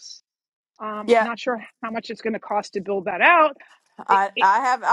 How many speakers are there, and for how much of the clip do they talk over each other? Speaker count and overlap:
2, about 12%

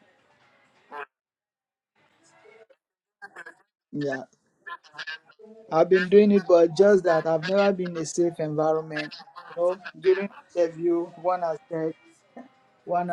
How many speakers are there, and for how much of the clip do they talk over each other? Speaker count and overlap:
1, no overlap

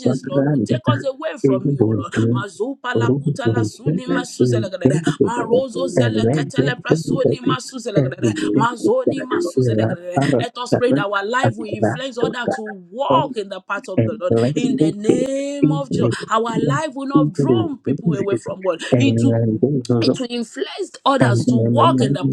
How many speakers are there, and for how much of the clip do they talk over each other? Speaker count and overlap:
2, about 61%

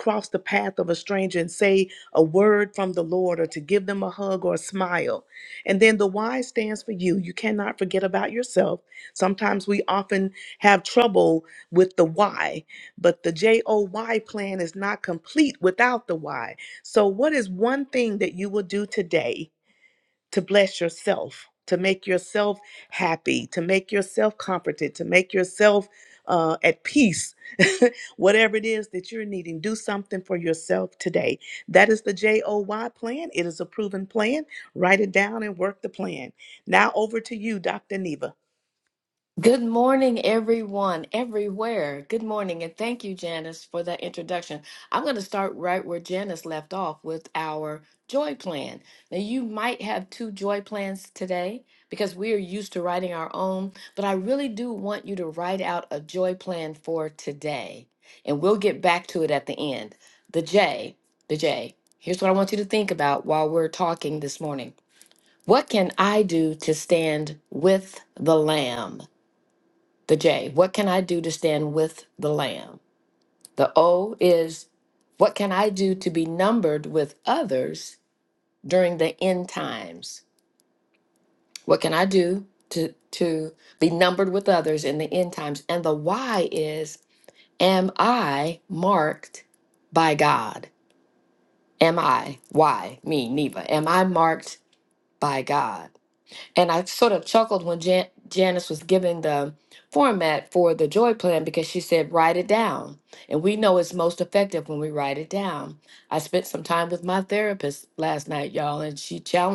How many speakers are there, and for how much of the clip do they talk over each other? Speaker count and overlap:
2, no overlap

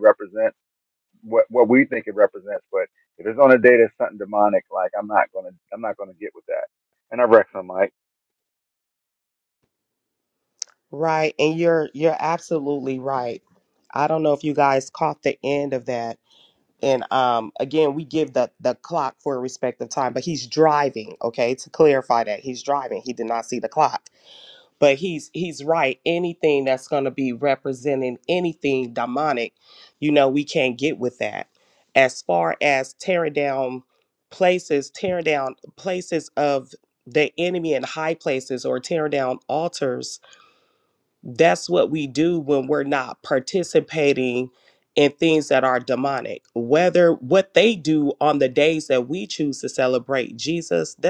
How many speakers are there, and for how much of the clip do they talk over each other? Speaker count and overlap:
2, no overlap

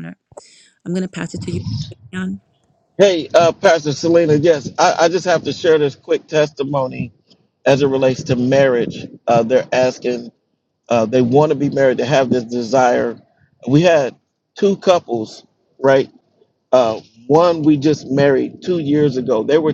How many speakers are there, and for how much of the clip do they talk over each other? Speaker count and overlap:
2, no overlap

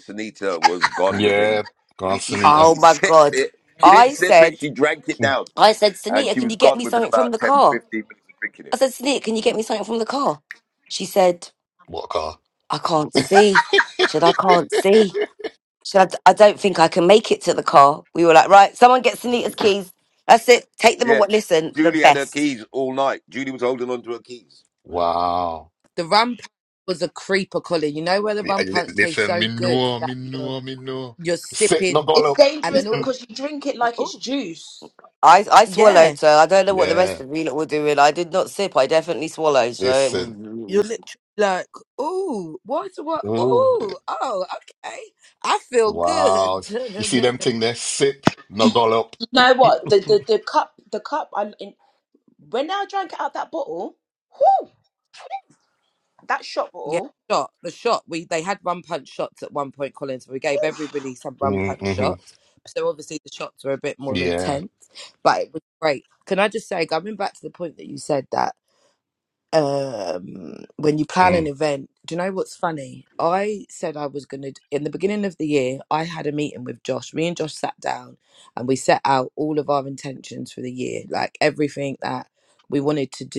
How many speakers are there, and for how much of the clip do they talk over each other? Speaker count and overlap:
5, about 17%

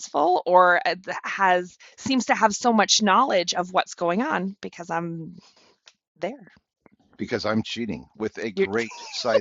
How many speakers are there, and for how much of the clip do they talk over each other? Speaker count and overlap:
2, about 1%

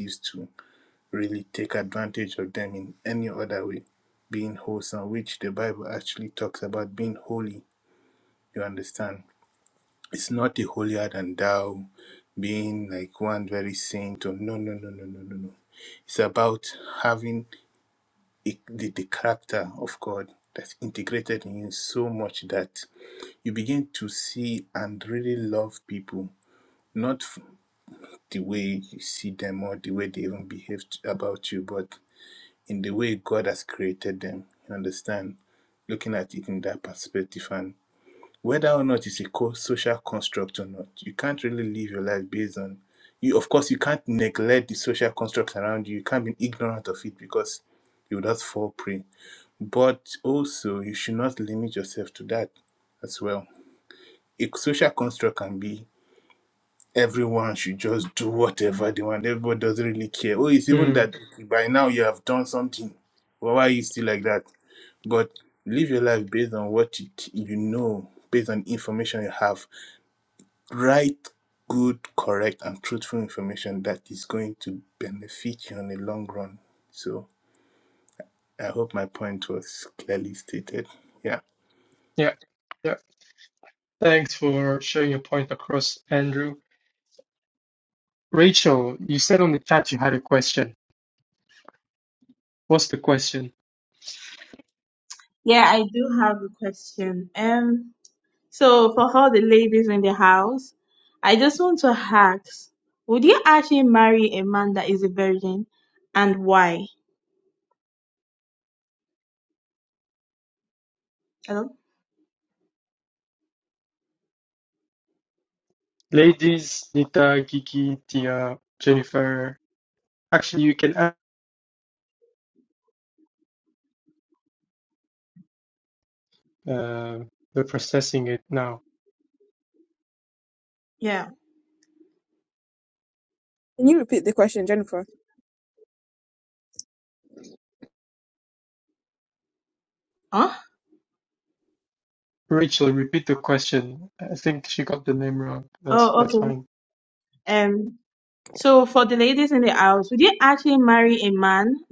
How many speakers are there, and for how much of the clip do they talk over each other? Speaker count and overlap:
4, about 1%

